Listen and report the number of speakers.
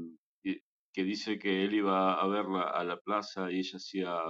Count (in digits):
1